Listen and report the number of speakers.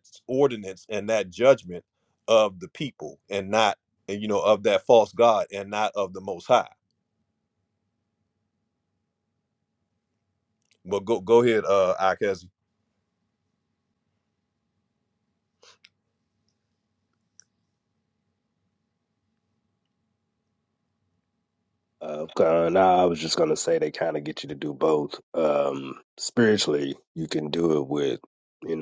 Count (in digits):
2